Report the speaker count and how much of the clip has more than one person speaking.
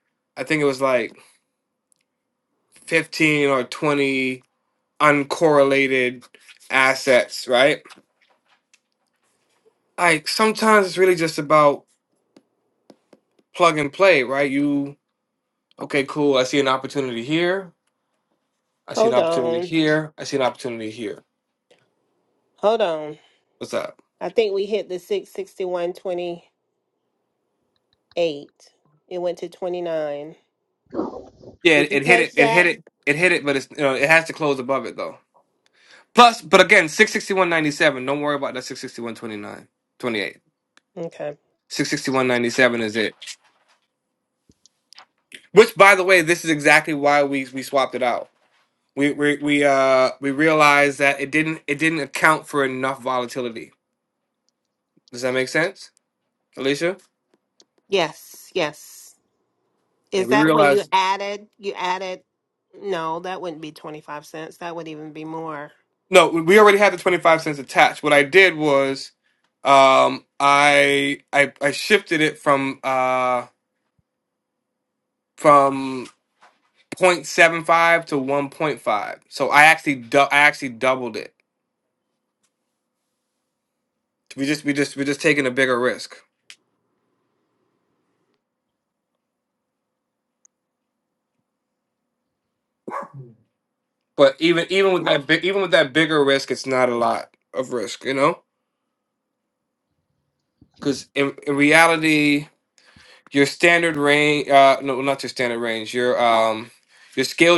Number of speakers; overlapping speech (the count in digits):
2, about 2%